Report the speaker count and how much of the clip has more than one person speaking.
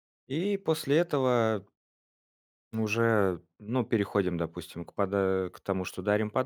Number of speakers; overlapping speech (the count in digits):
1, no overlap